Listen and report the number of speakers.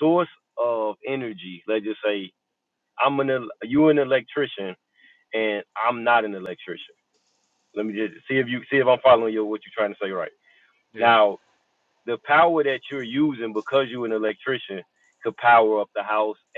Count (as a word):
one